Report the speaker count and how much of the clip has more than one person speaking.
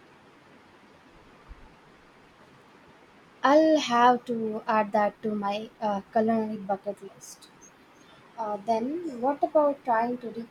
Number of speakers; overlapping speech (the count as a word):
one, no overlap